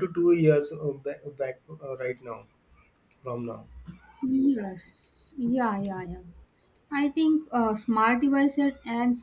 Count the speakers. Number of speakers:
2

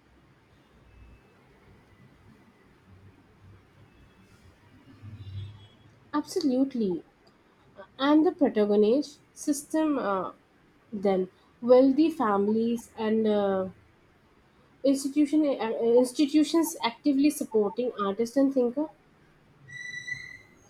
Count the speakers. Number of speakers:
1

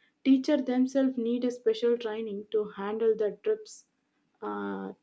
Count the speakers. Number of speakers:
1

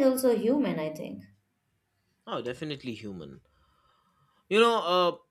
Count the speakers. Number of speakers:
2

